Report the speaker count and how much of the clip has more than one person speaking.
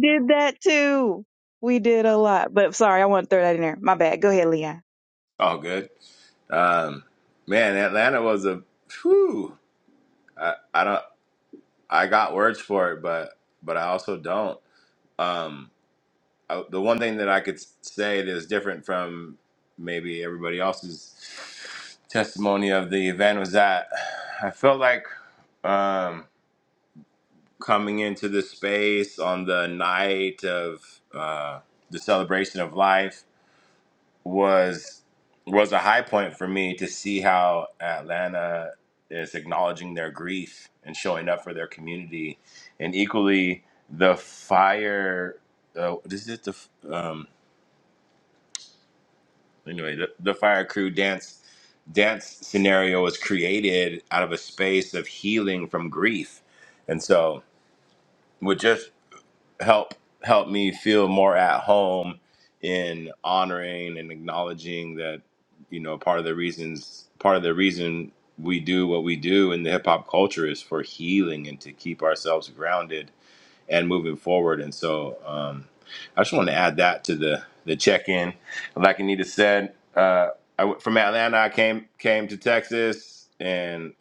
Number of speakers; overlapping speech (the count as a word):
two, no overlap